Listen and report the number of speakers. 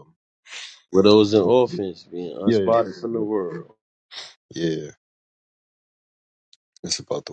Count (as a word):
two